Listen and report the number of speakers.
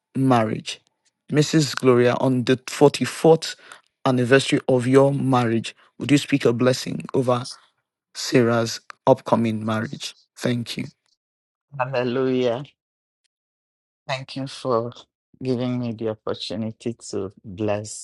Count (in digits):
2